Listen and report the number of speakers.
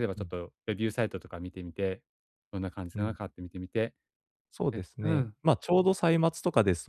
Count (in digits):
2